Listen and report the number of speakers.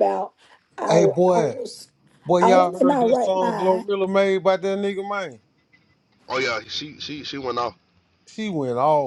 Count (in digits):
3